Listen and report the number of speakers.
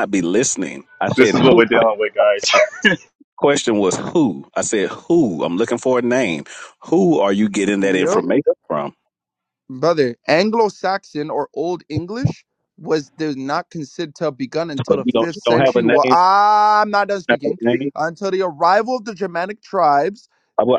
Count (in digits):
3